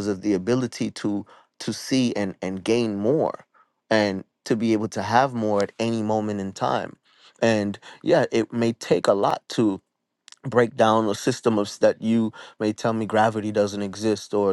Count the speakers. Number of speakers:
1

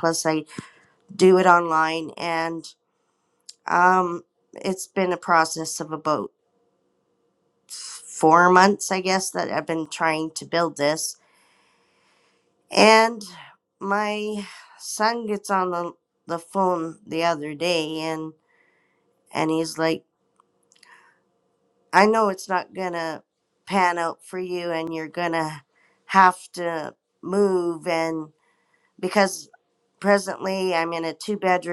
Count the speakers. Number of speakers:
1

